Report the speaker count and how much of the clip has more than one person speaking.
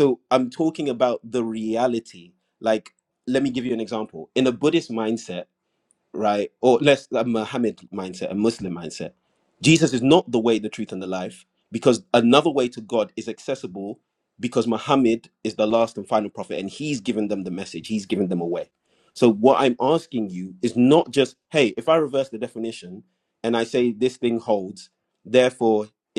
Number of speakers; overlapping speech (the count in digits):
1, no overlap